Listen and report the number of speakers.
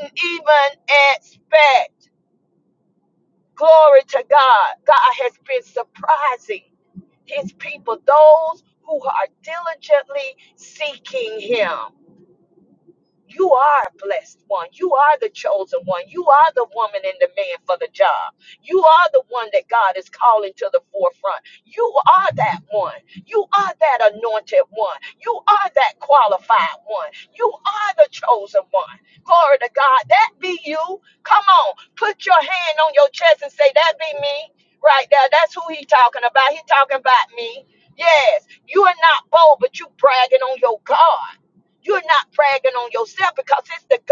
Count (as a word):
one